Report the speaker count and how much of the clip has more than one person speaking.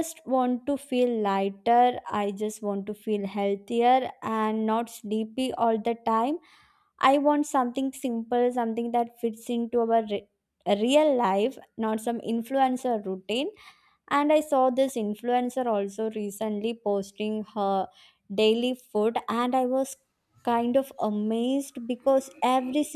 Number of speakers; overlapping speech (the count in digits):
1, no overlap